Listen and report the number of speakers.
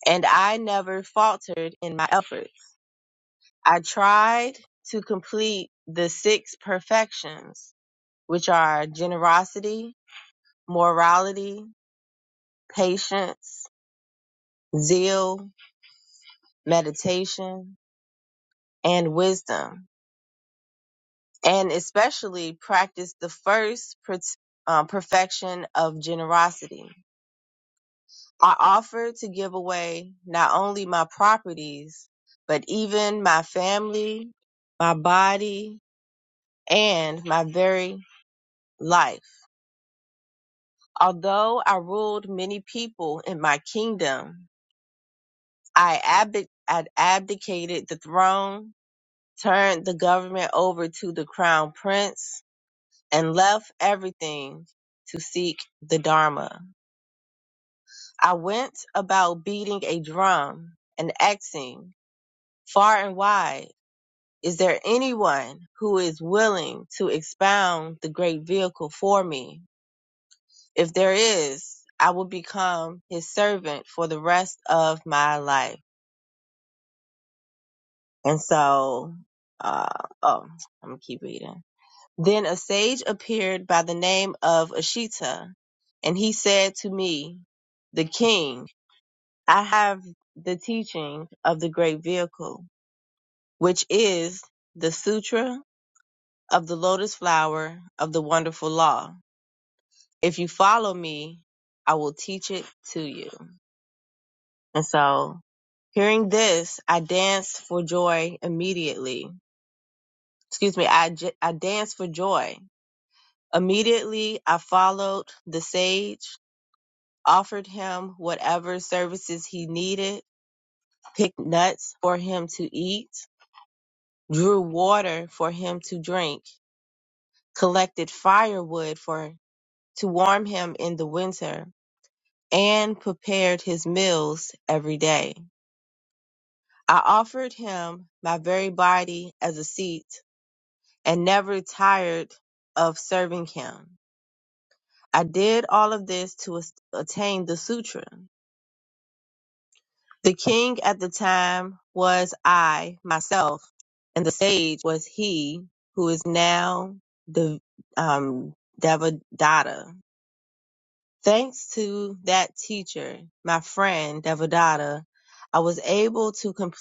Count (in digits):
1